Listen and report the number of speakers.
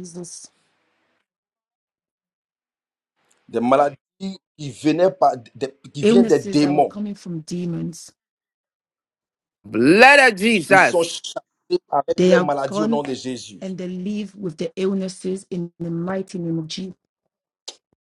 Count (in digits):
3